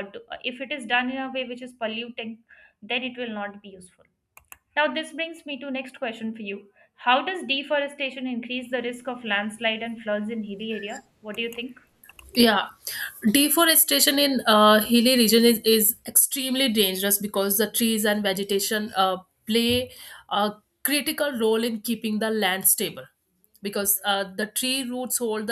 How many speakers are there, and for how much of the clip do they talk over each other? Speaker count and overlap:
two, no overlap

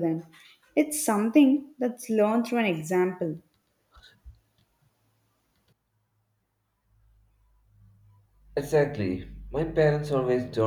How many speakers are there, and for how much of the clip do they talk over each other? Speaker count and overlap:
two, no overlap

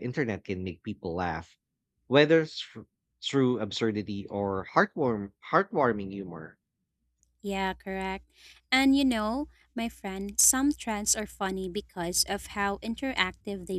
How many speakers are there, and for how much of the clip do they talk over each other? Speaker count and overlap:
two, no overlap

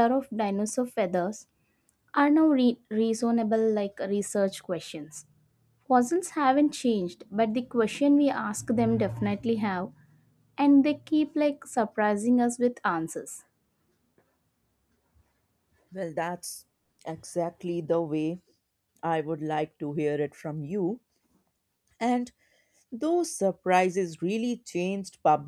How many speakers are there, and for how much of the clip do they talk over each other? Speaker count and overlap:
two, no overlap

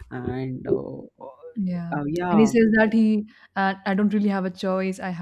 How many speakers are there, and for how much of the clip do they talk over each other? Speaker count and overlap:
two, about 6%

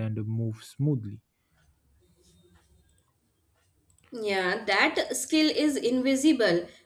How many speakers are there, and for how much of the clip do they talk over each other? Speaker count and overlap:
two, no overlap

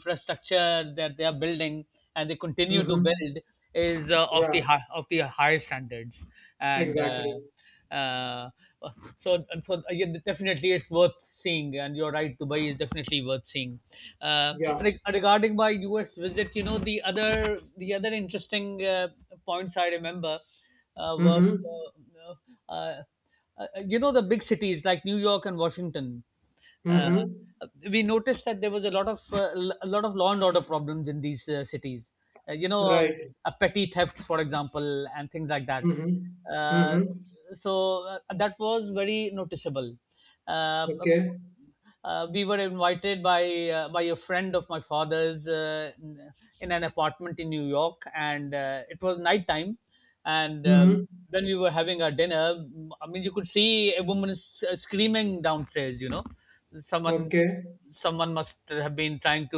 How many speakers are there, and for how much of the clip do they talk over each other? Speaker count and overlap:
two, about 6%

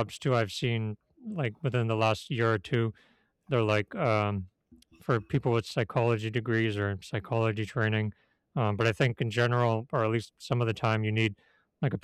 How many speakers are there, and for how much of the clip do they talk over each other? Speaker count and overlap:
one, no overlap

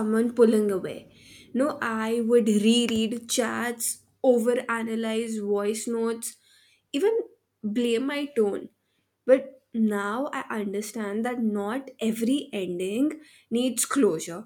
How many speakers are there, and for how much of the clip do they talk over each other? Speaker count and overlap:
one, no overlap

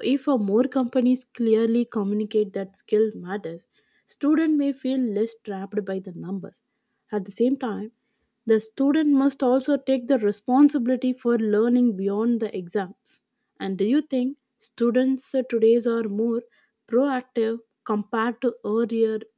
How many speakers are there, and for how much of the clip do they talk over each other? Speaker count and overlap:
one, no overlap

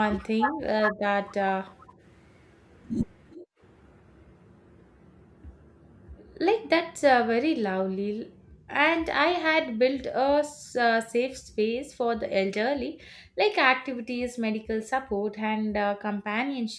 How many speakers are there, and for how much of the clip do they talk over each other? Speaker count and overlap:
one, no overlap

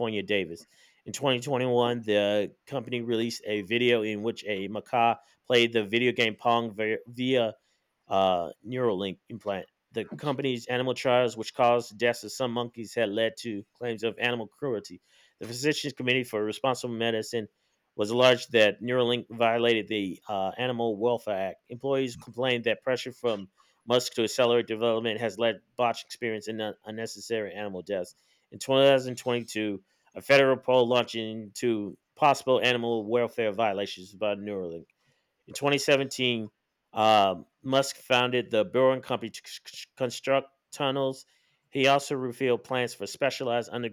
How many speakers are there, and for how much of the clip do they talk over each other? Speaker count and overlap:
one, no overlap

